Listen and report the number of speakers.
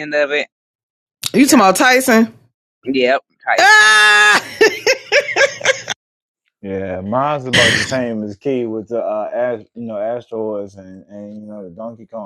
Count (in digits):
3